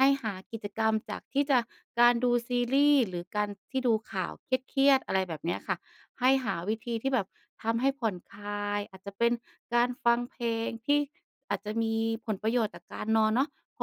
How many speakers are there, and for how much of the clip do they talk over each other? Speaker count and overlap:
1, no overlap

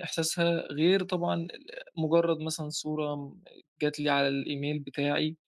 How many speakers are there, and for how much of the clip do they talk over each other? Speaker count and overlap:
1, no overlap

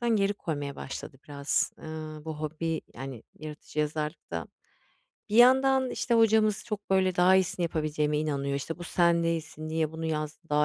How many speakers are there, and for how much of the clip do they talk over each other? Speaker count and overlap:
1, no overlap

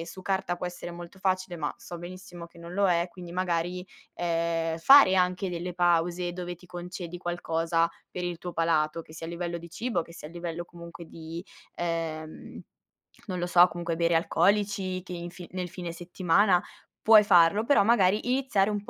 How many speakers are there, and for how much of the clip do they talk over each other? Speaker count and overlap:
1, no overlap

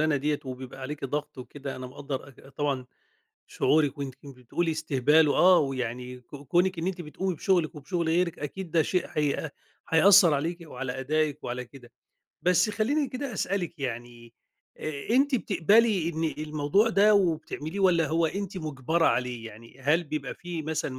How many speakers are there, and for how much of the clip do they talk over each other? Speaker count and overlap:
1, no overlap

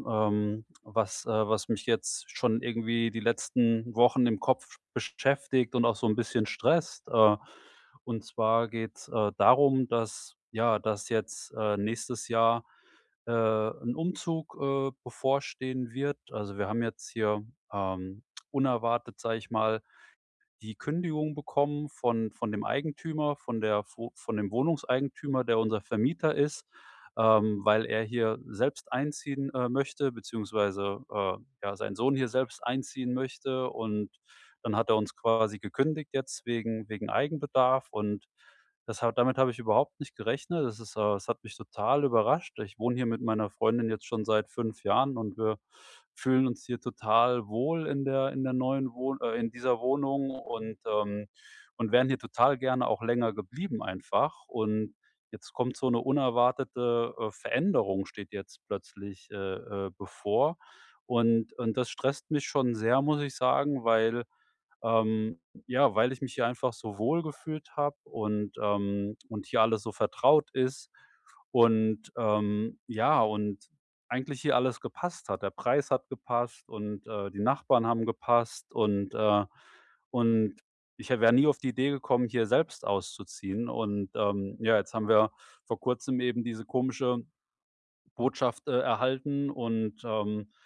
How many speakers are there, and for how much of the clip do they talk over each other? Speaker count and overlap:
1, no overlap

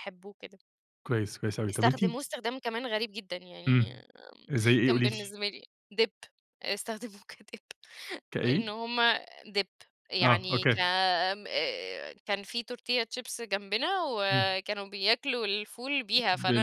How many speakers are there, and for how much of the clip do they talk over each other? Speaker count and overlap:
2, about 14%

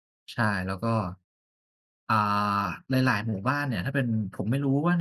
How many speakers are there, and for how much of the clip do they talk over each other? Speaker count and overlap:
1, no overlap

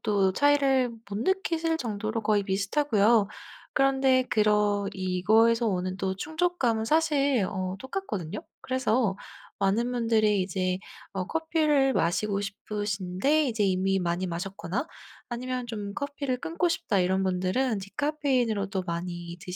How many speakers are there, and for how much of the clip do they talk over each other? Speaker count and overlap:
1, no overlap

